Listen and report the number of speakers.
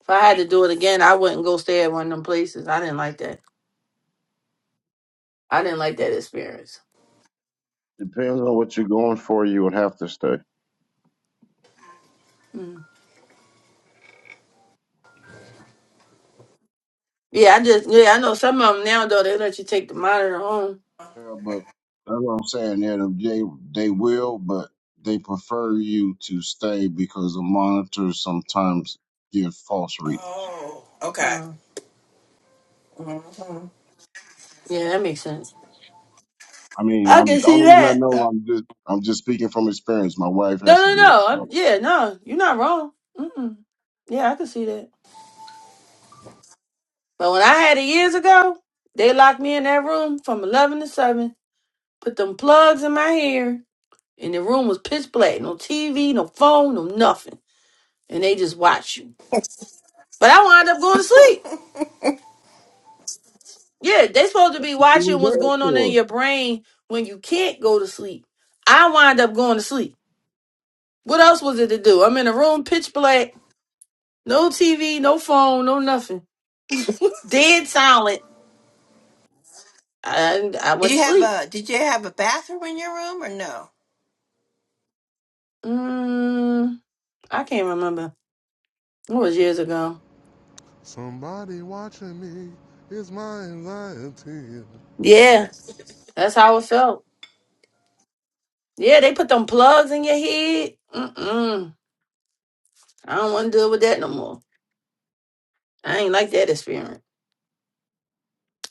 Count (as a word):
four